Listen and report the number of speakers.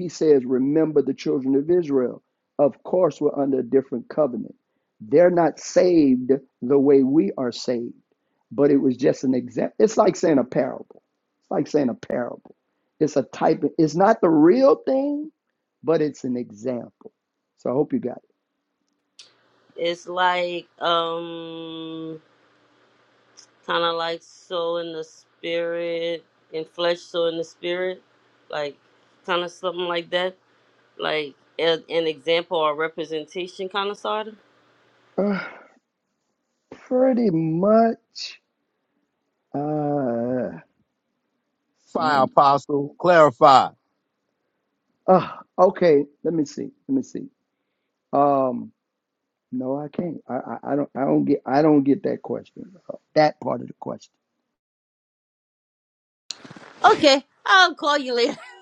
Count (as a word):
three